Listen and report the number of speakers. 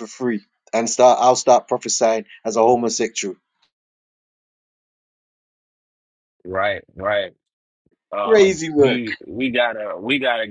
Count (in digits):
2